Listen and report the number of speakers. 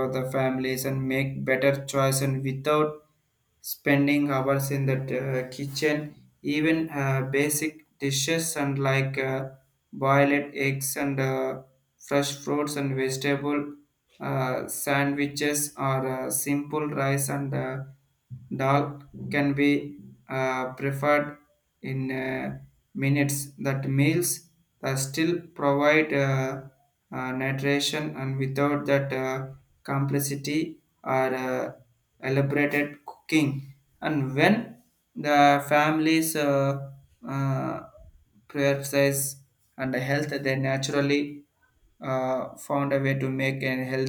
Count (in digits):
1